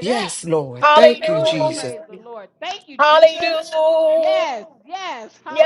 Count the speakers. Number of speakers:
3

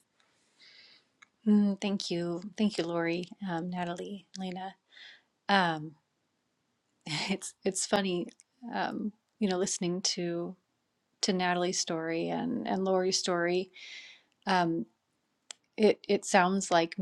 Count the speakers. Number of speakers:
1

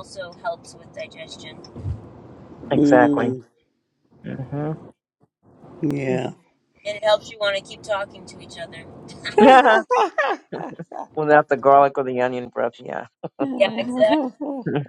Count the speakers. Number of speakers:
3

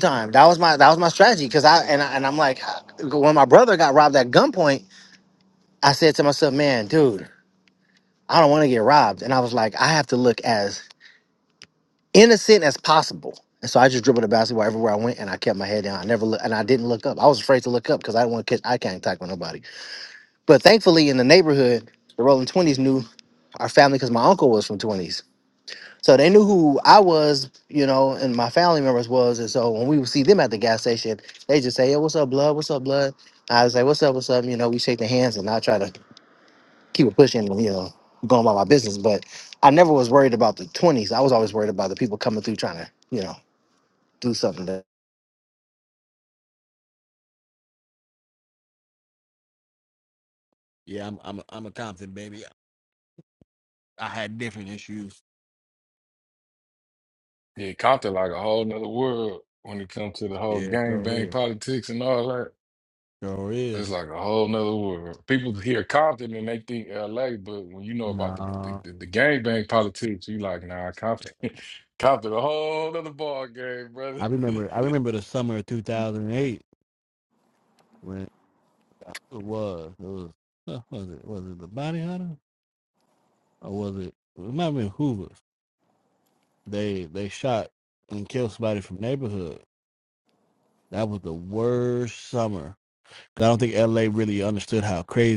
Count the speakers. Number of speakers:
3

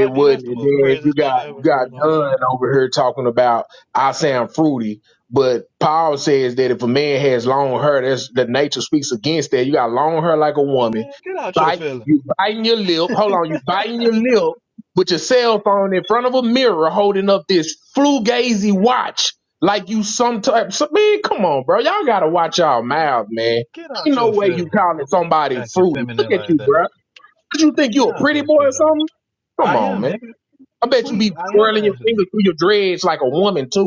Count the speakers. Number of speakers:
2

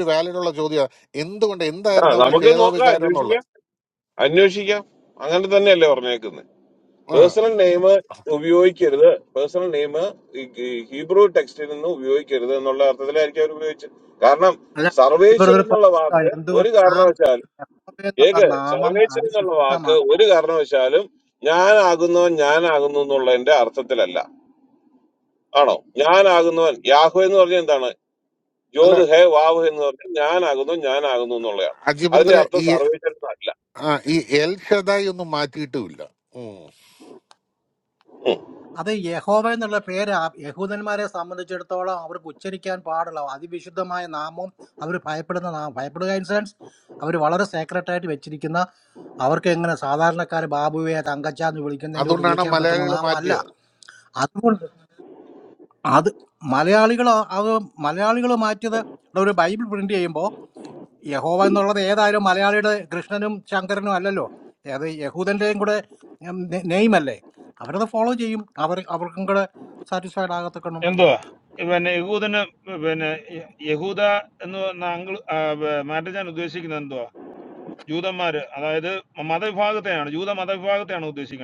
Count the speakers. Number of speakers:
4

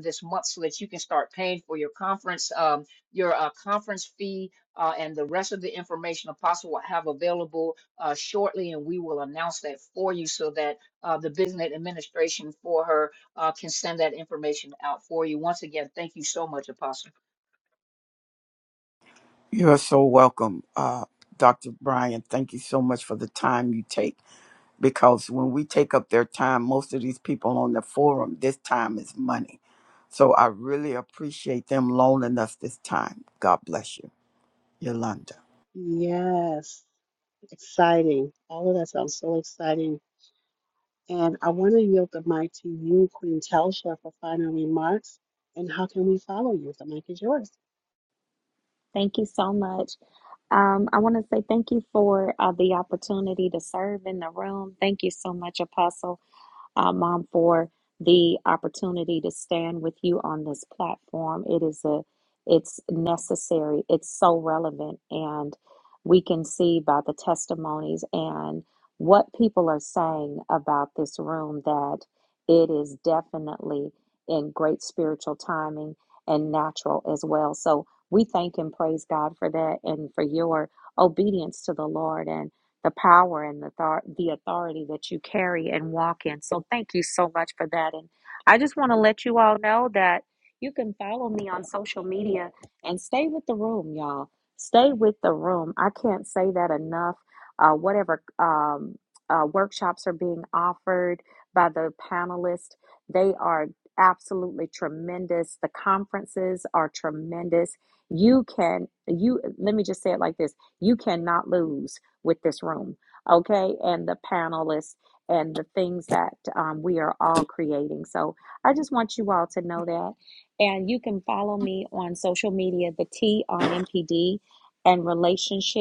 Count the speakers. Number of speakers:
4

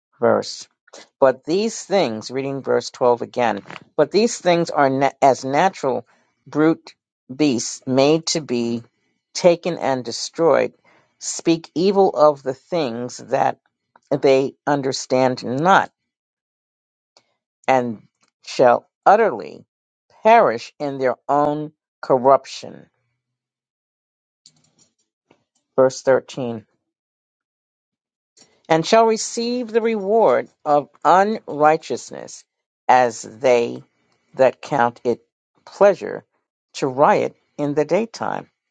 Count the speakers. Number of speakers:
1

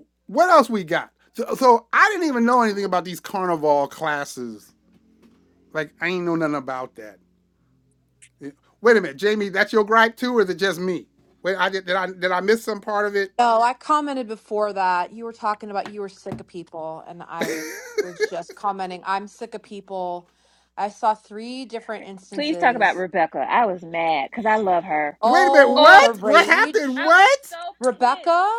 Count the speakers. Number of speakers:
3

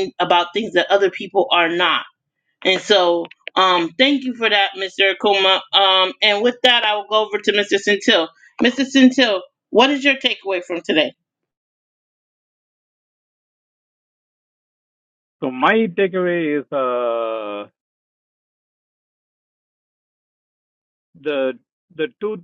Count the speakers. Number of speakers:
2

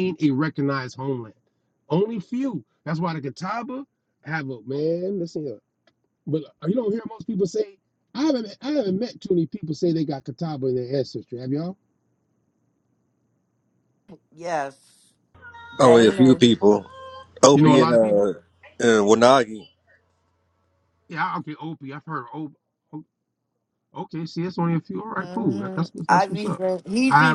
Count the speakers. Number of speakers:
3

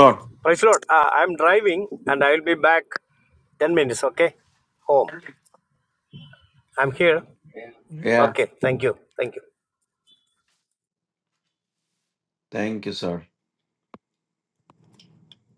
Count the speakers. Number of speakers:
2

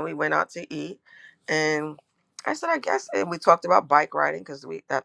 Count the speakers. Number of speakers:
1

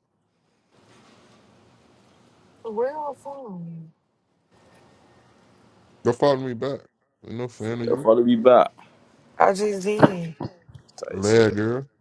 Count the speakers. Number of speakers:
3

